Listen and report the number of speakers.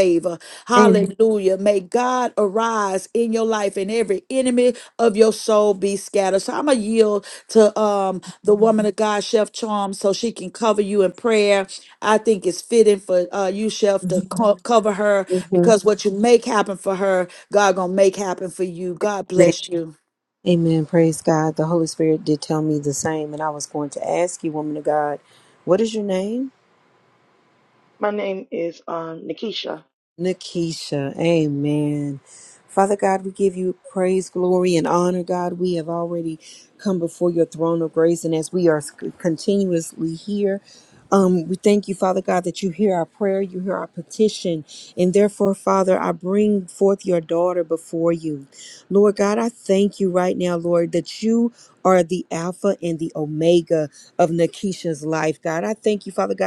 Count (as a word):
three